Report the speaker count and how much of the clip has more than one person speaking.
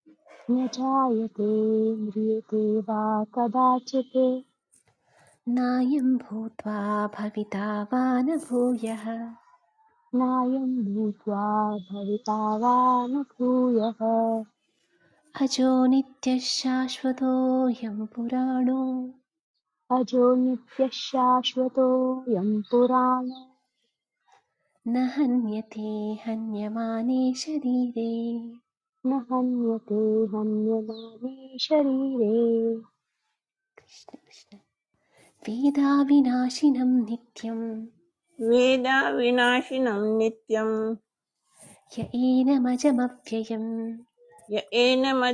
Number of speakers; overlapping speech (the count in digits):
3, no overlap